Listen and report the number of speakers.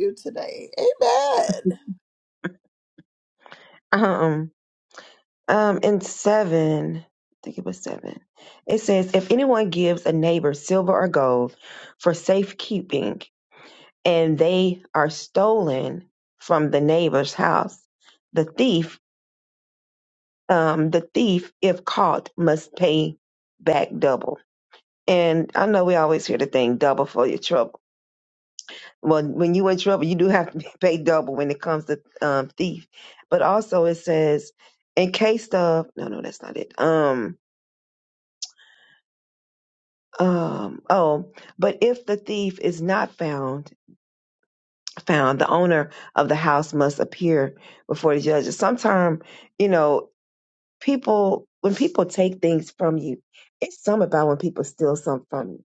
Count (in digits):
2